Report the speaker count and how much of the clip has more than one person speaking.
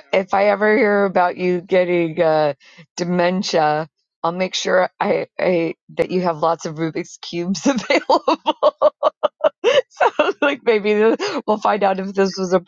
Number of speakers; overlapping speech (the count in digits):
1, no overlap